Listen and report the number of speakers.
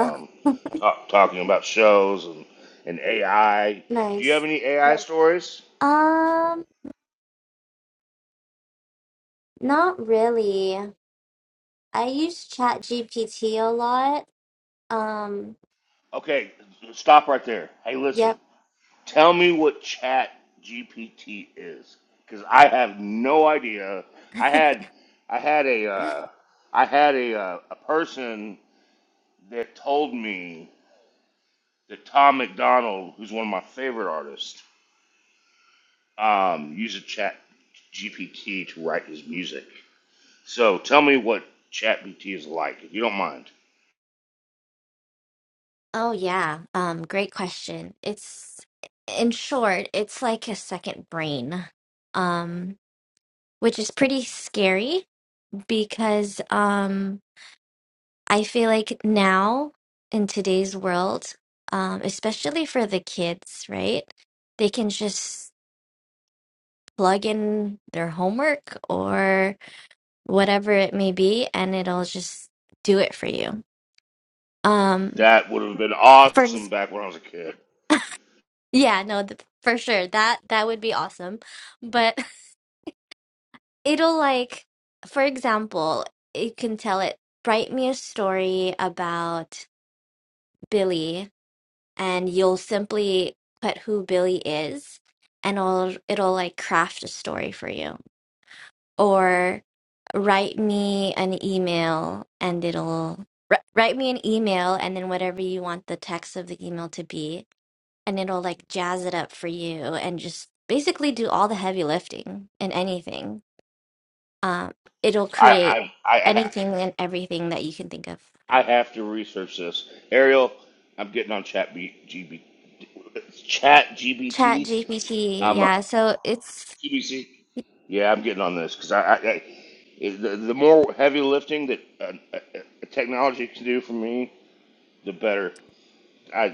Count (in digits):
2